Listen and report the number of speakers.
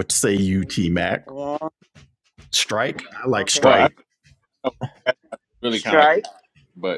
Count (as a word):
three